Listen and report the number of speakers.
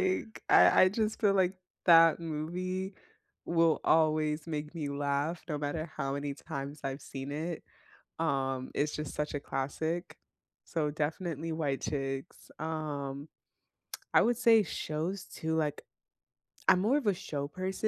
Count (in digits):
1